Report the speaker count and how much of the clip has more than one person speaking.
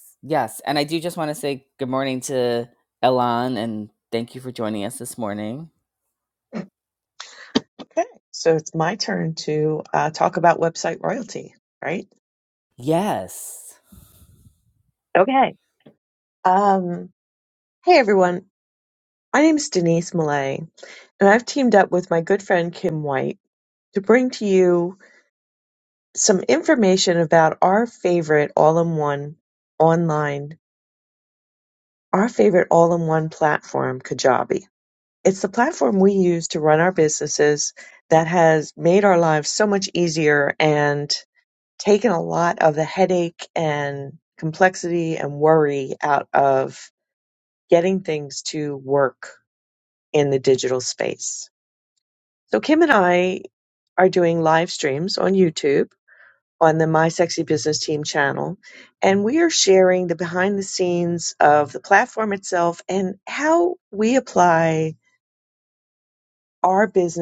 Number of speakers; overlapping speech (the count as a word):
two, no overlap